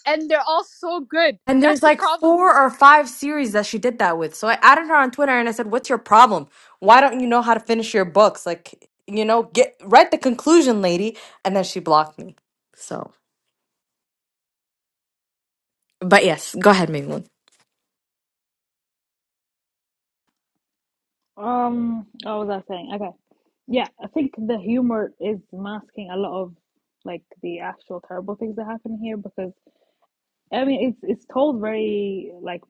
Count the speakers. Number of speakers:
3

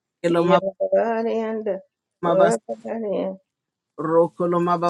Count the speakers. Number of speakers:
2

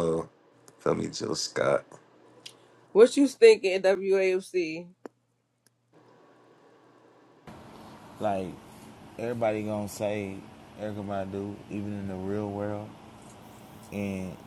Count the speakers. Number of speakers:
3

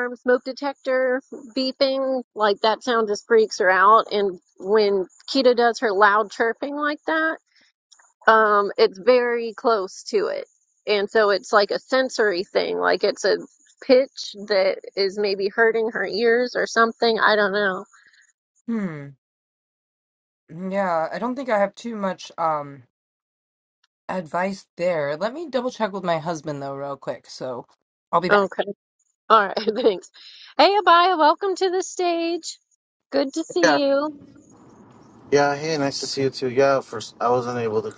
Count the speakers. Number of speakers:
3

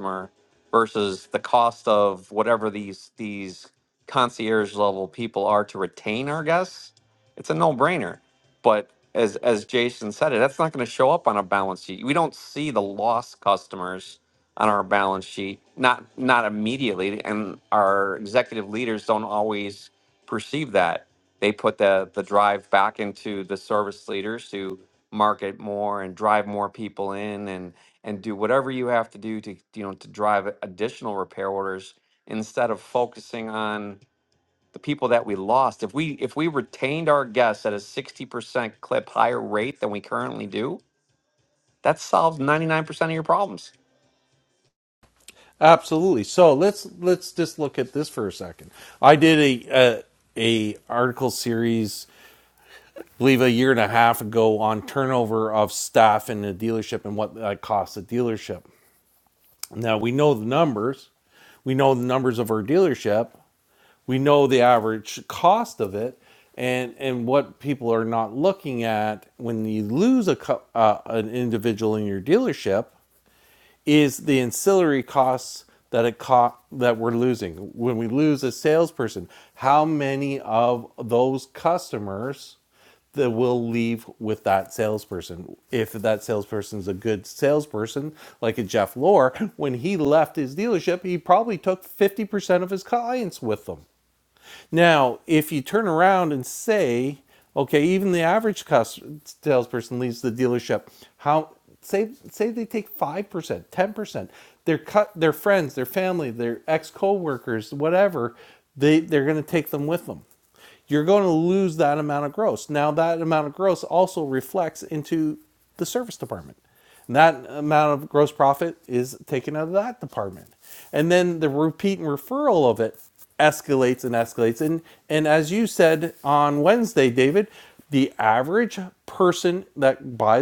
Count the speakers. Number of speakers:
2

